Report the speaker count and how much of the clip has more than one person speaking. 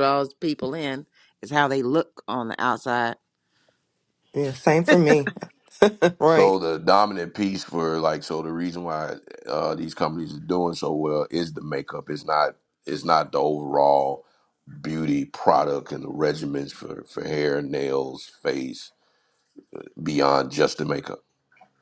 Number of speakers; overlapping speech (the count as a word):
three, about 1%